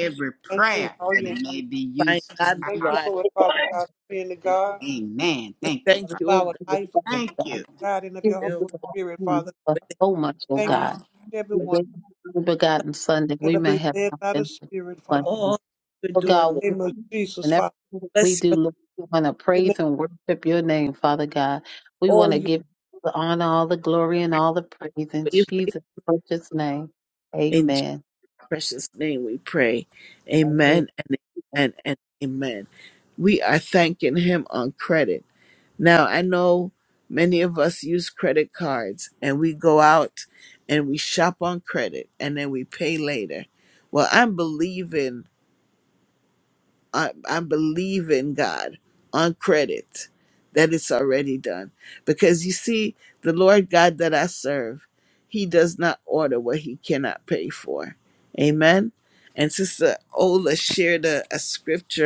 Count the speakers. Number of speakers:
4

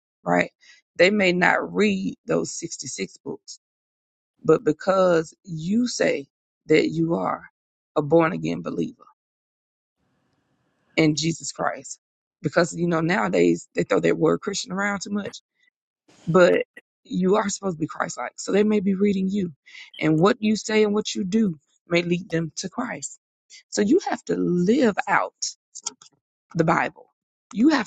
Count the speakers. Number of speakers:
1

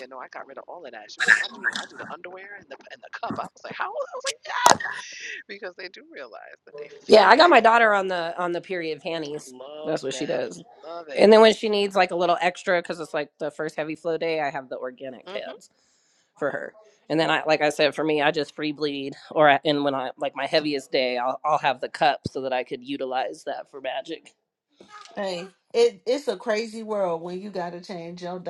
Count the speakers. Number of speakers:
3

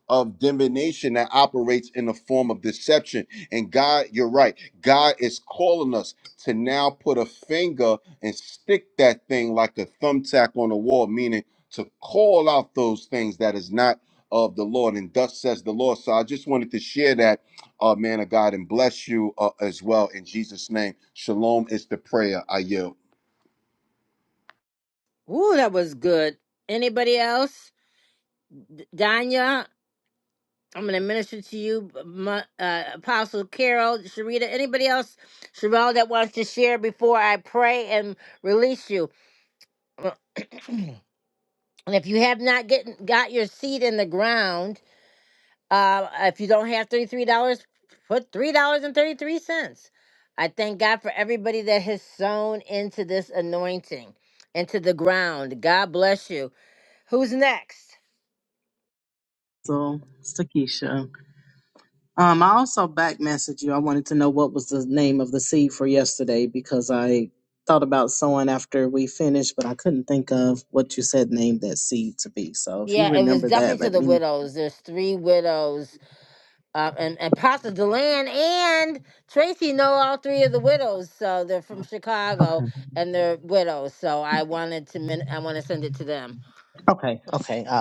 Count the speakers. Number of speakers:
3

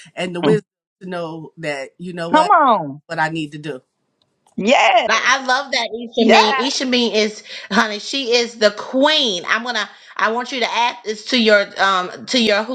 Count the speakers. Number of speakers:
3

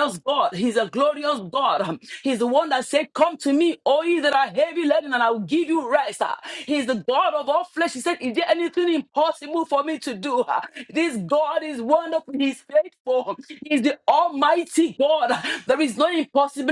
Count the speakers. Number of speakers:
1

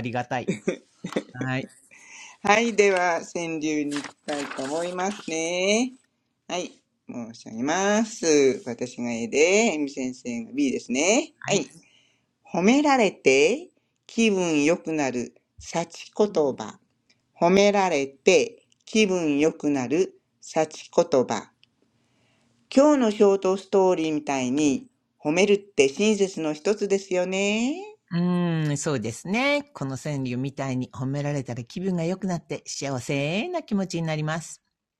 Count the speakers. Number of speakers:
2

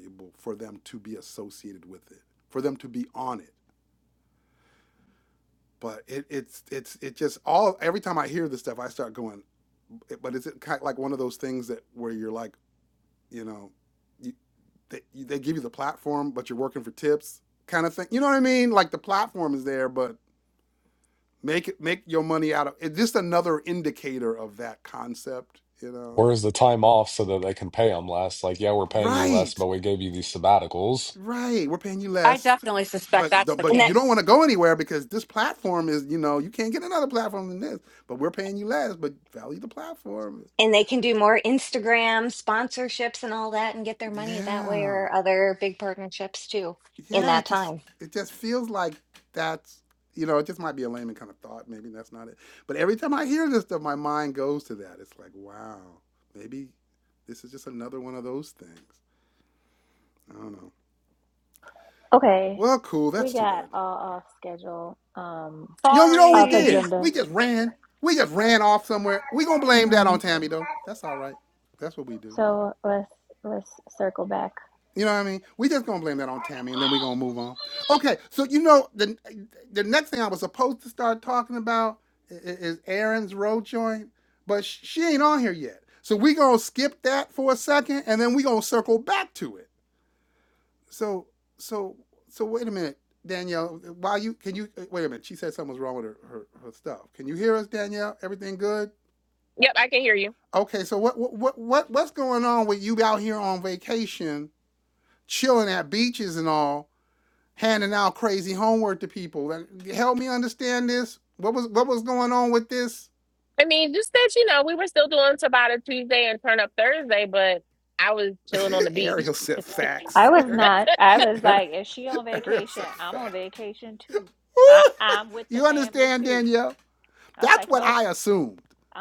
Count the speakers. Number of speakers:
6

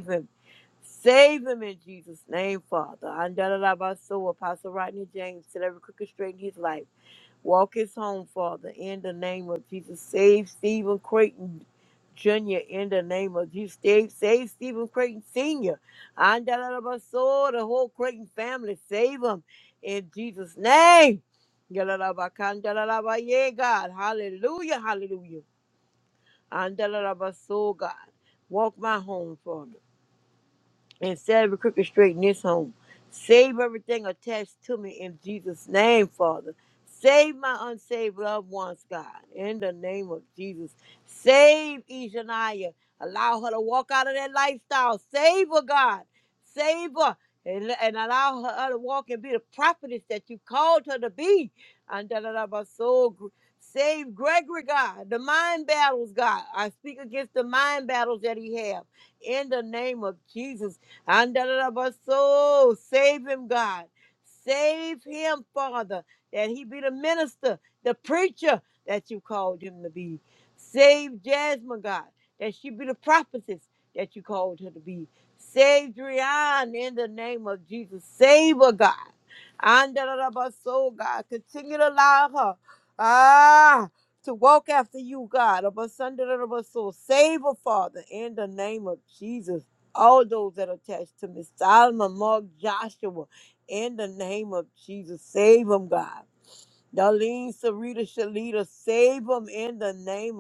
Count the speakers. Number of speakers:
1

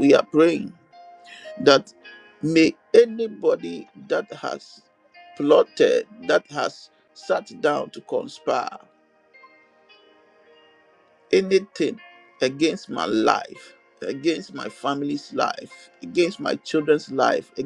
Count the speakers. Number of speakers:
1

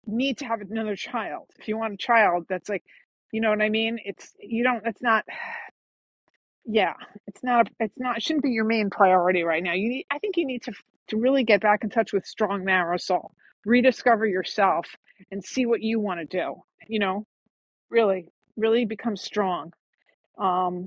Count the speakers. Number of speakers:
1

